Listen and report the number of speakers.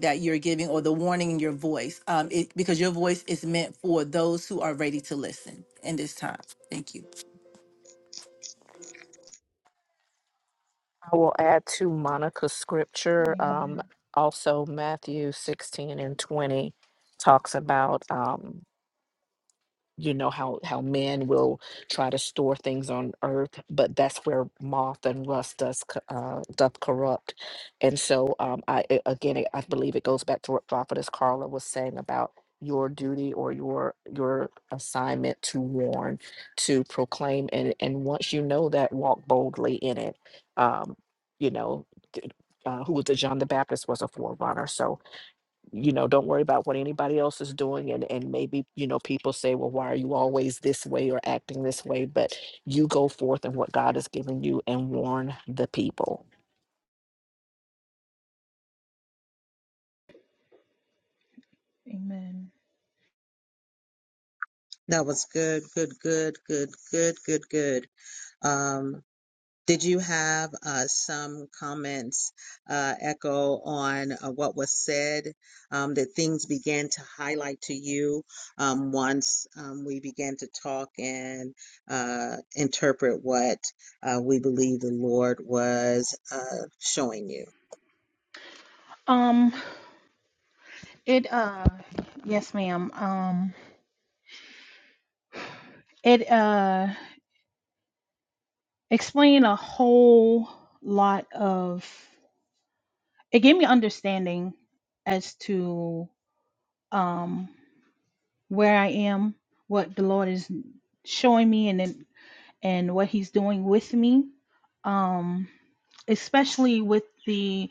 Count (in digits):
4